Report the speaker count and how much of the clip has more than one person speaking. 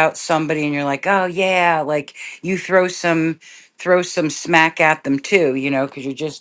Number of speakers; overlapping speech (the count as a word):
one, no overlap